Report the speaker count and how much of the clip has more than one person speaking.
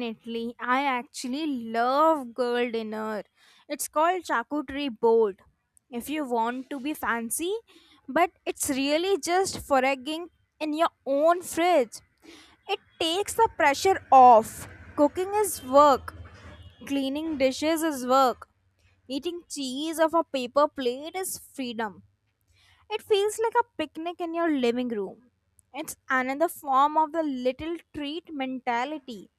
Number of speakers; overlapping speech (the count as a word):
one, no overlap